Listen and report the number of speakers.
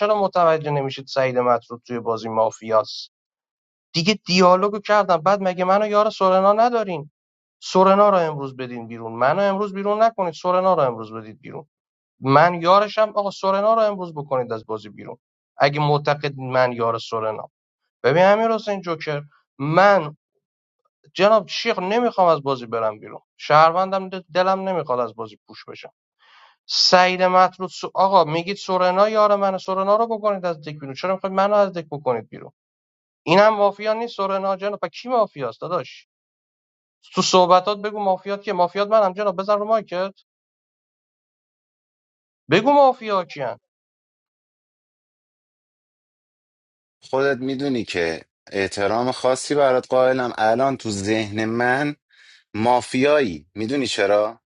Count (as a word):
two